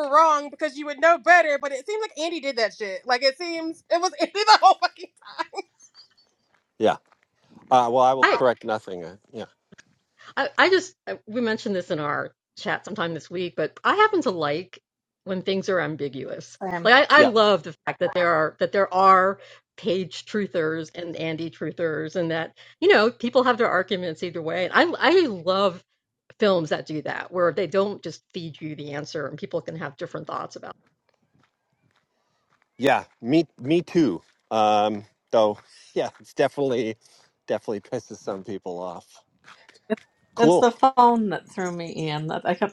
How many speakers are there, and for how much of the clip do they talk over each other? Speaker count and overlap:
4, about 2%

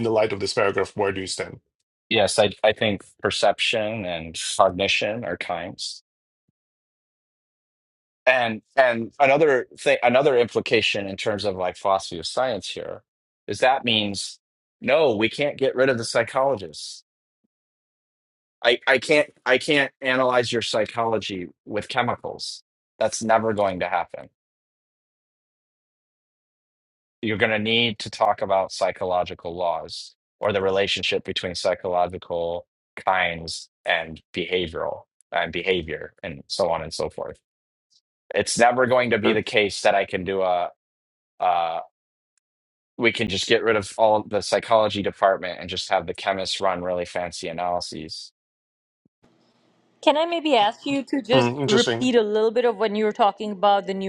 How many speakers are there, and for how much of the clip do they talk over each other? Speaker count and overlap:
3, about 2%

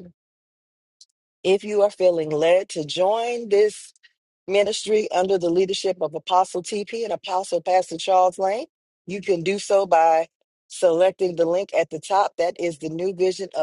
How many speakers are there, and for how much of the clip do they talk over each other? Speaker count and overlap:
1, no overlap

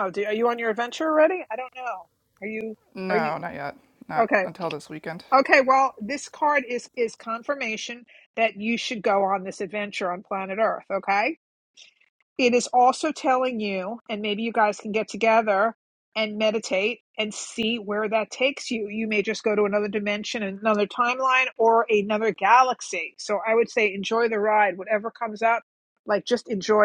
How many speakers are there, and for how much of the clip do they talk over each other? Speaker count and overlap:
2, about 2%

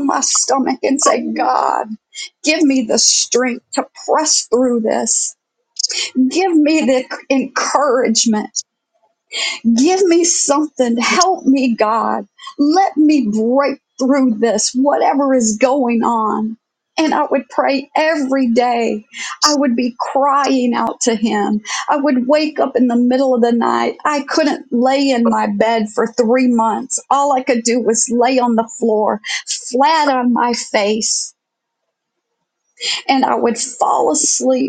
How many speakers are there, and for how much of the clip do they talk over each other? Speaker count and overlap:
1, no overlap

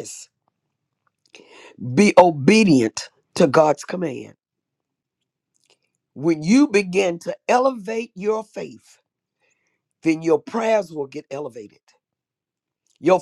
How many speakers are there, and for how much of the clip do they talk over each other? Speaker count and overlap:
1, no overlap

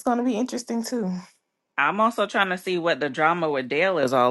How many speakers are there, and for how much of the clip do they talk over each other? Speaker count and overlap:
2, no overlap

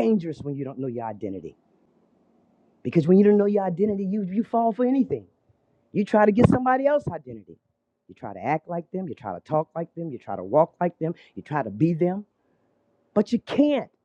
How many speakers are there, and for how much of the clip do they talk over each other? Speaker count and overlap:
1, no overlap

